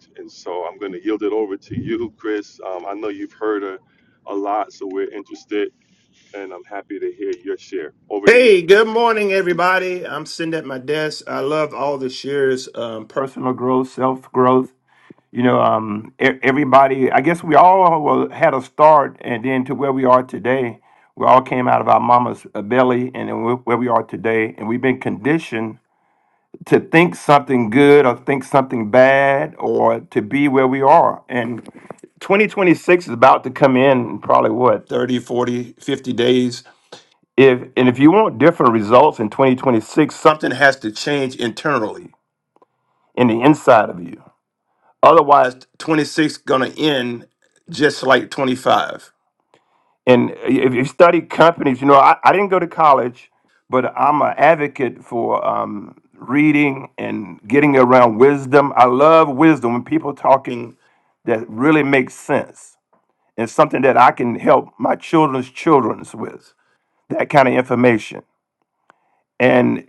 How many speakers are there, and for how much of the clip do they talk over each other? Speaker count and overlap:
two, under 1%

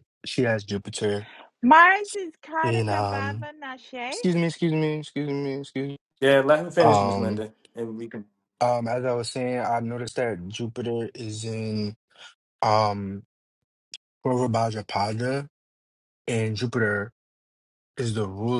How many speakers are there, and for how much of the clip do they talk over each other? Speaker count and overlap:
three, about 8%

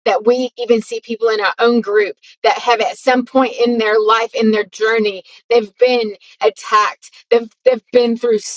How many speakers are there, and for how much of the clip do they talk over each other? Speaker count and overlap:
one, no overlap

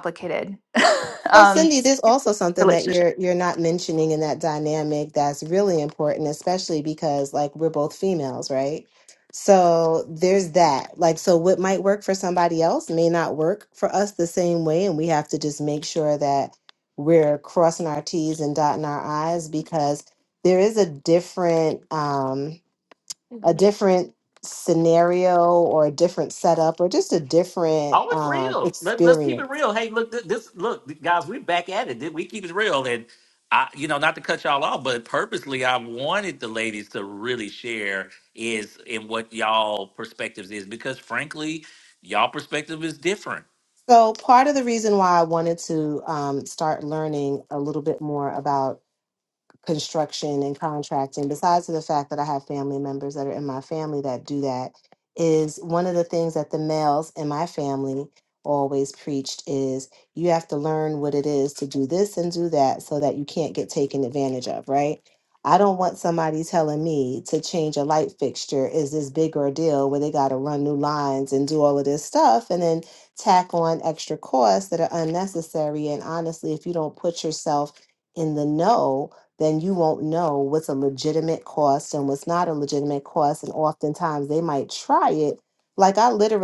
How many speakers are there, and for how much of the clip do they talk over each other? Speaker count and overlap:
three, about 3%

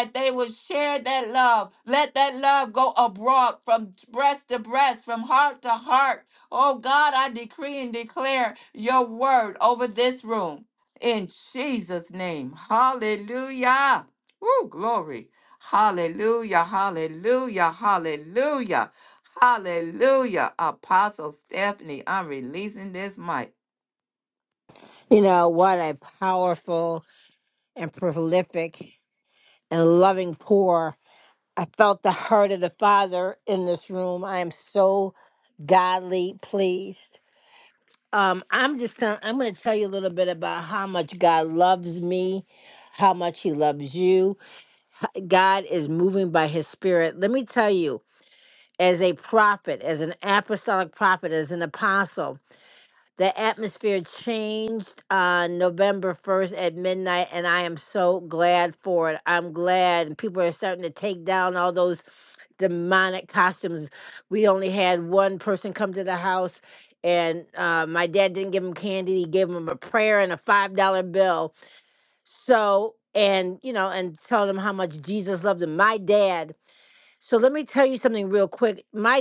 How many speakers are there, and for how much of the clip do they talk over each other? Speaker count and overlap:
two, no overlap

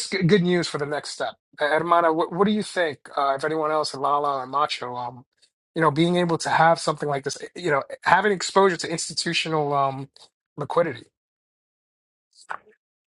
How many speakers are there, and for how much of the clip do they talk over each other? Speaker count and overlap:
one, no overlap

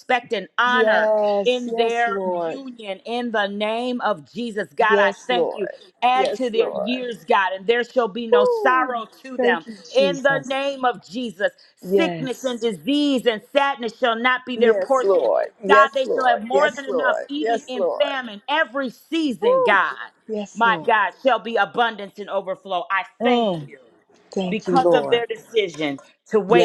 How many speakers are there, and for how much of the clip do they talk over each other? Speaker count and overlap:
two, about 39%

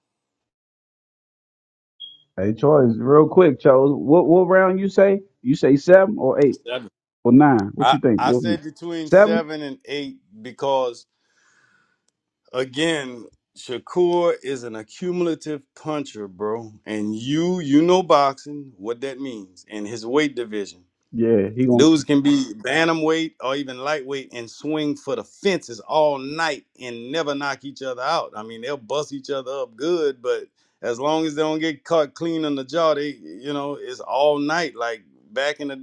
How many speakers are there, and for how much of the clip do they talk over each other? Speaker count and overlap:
two, about 3%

